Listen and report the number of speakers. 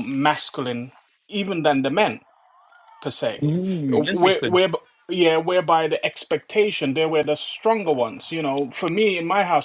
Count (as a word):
two